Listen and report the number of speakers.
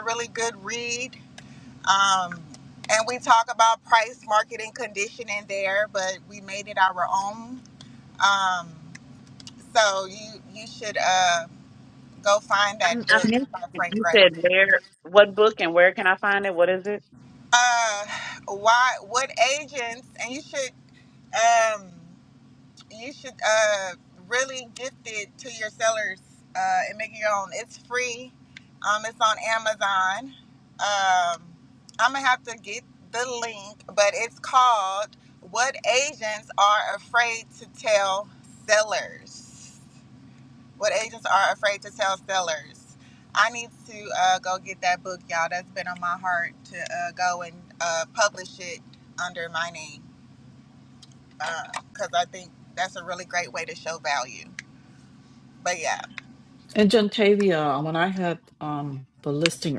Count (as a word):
three